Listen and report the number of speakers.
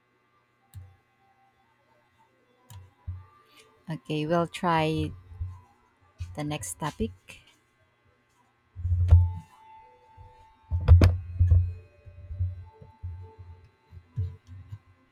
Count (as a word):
one